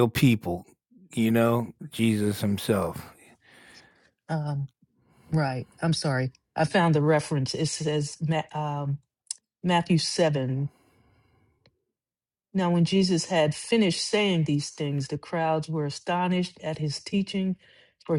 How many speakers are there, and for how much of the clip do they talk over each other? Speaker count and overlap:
2, no overlap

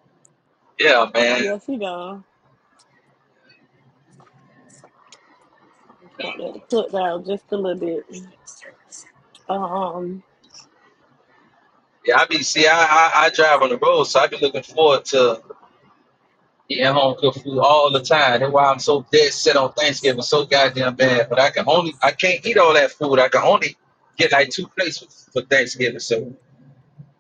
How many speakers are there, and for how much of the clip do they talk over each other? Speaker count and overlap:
2, about 1%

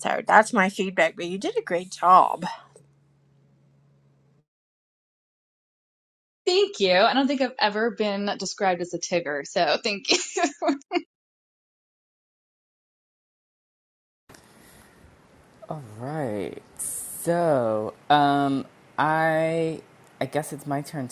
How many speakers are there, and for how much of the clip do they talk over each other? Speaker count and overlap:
3, no overlap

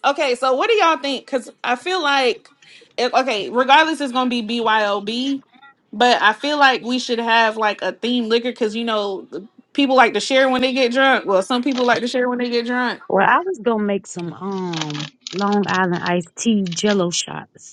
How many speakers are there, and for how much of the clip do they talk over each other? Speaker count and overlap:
2, no overlap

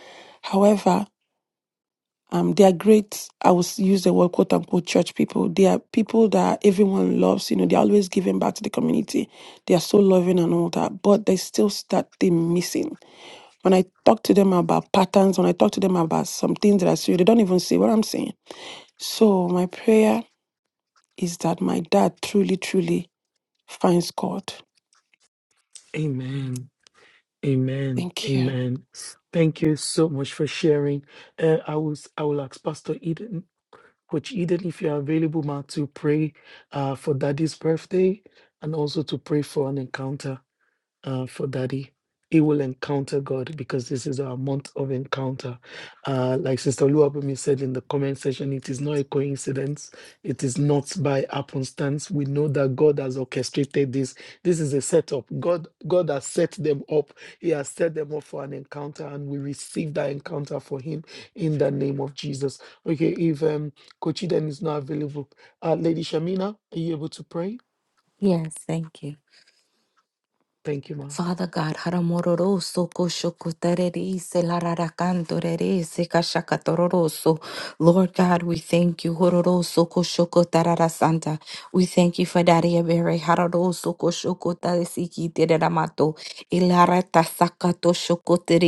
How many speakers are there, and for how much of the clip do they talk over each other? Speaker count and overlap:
3, about 1%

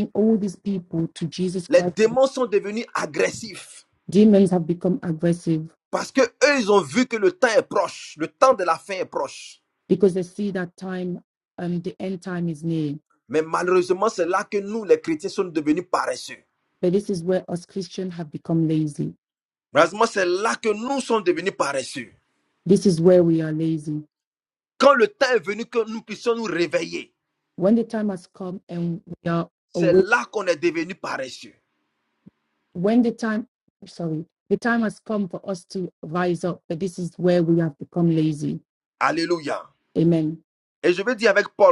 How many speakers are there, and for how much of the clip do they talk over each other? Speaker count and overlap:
2, about 1%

